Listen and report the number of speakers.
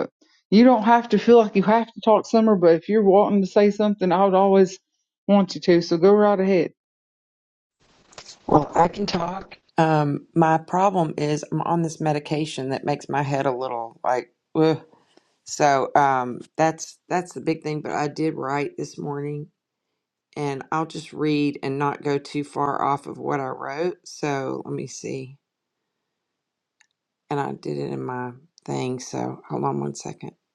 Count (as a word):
two